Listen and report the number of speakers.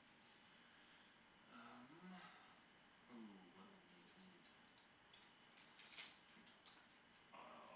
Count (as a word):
one